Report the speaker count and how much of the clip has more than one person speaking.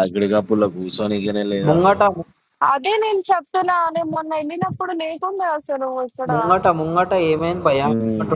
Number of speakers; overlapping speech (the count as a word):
three, about 7%